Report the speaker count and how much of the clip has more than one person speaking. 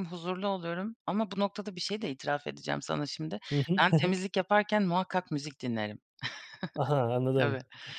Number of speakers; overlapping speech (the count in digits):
2, about 2%